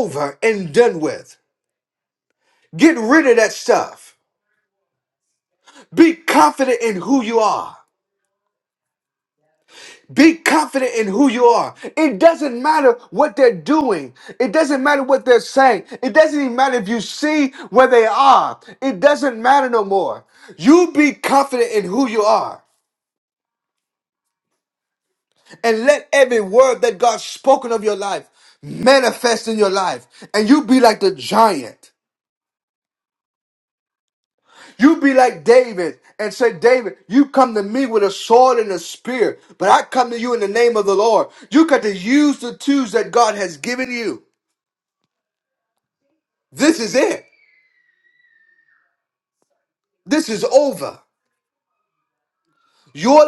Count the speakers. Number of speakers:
1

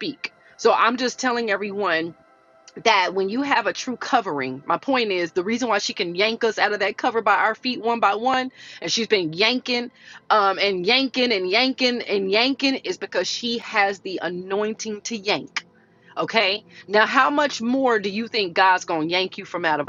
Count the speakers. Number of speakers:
1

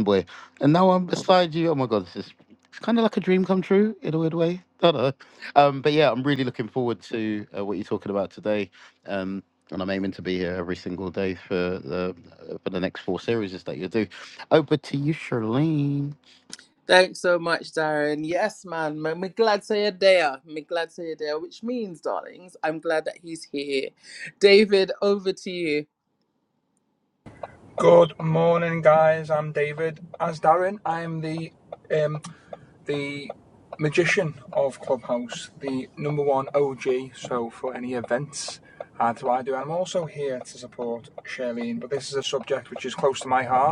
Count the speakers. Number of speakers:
3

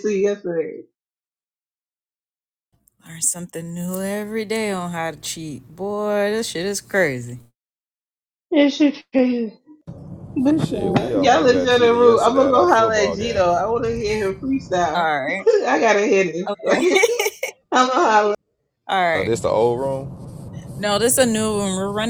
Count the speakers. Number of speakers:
3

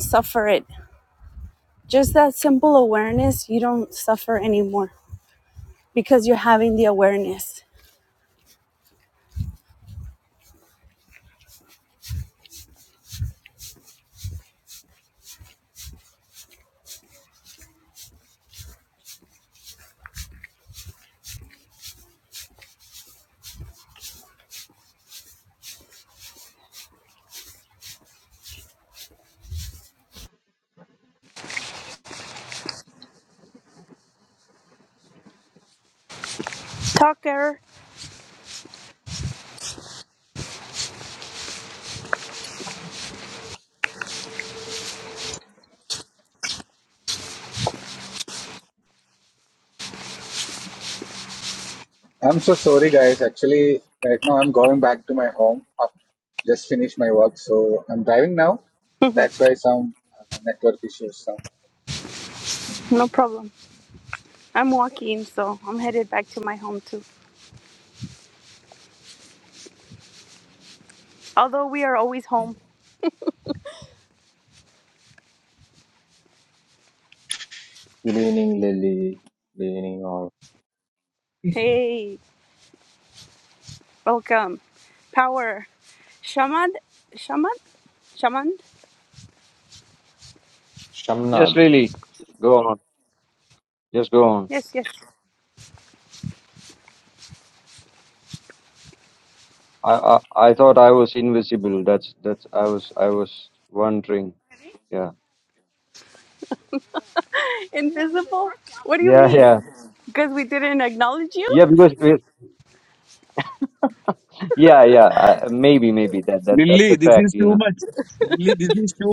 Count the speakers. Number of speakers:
5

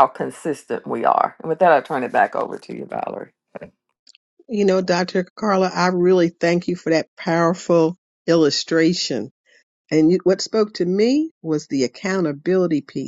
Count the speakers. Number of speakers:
2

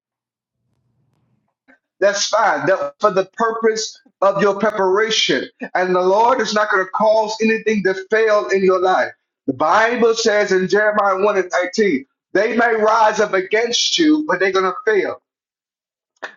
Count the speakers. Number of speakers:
1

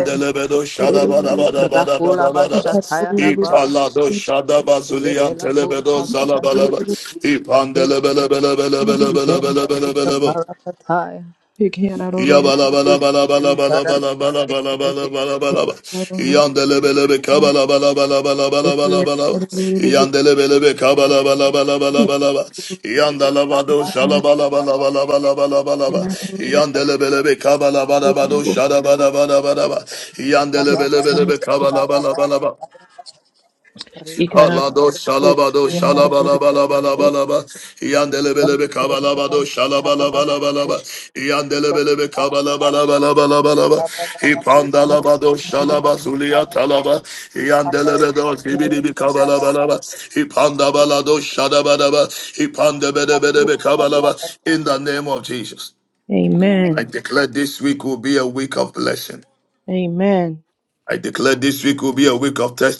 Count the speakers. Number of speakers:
3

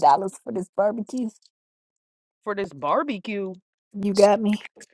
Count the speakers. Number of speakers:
2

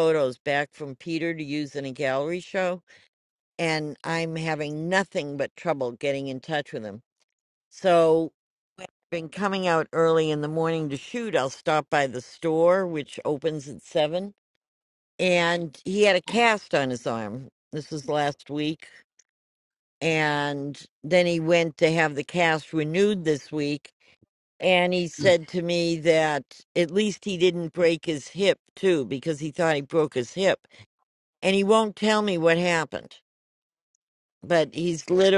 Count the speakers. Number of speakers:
1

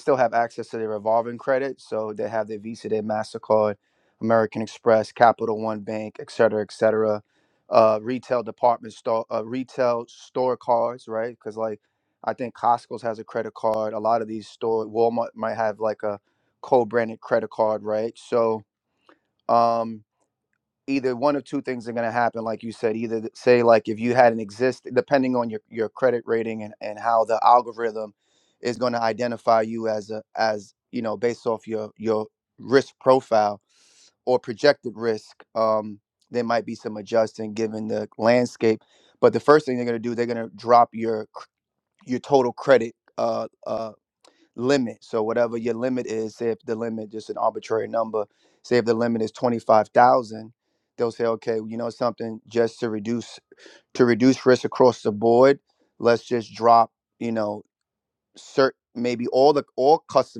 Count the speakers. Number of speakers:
1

